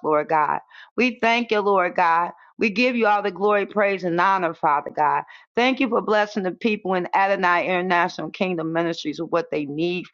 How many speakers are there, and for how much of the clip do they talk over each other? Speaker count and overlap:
1, no overlap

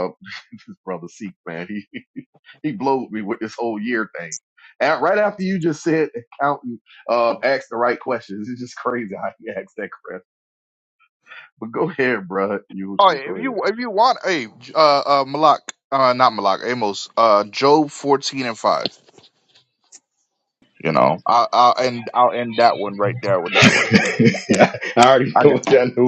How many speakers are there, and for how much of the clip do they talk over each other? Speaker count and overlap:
3, about 4%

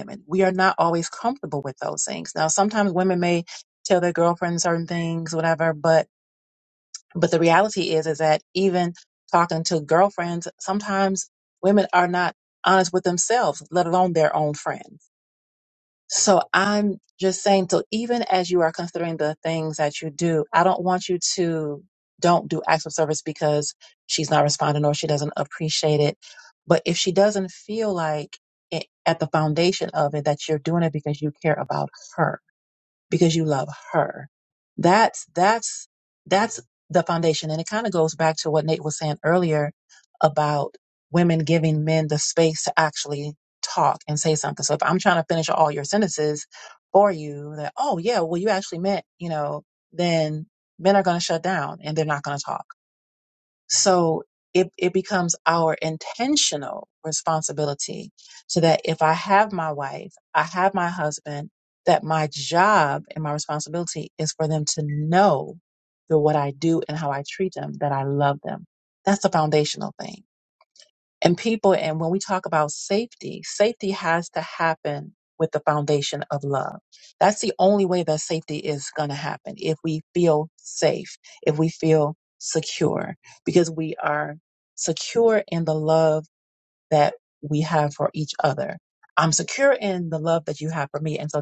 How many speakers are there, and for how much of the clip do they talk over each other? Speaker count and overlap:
1, no overlap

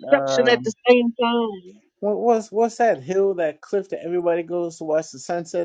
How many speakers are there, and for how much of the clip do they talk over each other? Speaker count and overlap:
2, about 12%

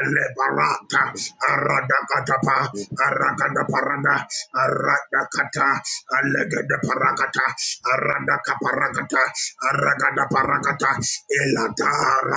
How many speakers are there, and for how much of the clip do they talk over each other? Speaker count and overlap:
1, no overlap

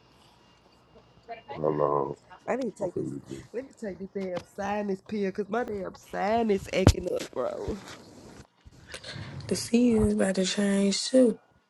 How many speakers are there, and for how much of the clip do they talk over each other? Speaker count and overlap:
3, about 2%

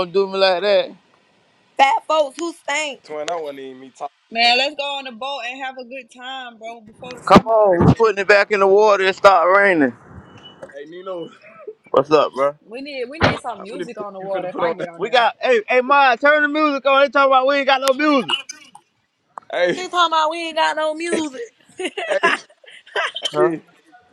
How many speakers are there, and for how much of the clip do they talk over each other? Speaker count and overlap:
4, about 10%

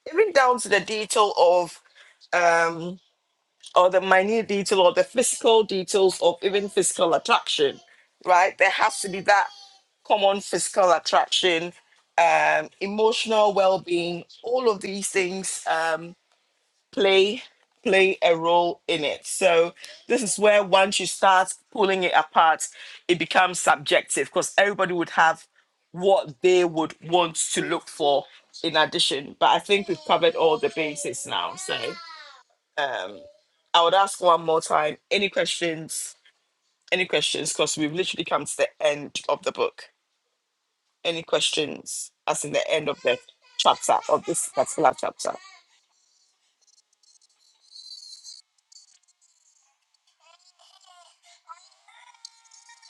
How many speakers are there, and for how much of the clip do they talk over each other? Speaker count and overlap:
1, no overlap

